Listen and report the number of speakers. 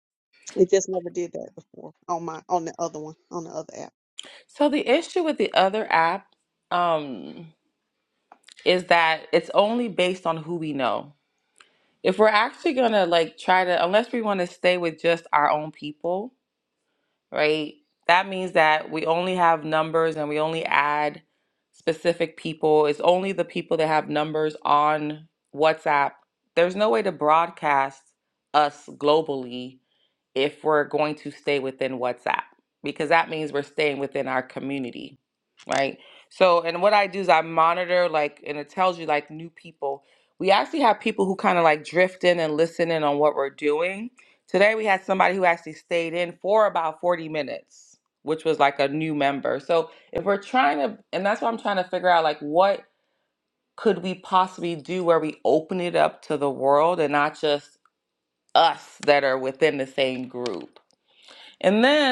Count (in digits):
2